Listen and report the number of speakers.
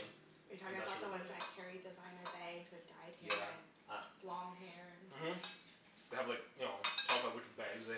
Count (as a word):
two